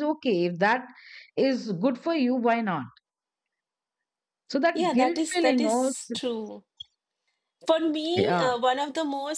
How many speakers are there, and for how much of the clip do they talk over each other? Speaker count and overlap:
two, about 15%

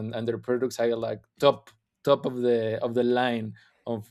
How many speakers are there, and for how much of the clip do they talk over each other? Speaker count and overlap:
one, no overlap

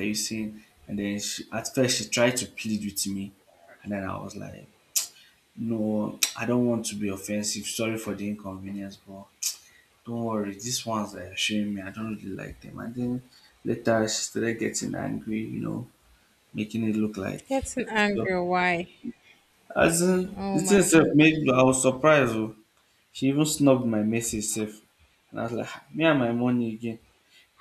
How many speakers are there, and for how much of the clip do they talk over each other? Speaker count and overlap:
two, about 3%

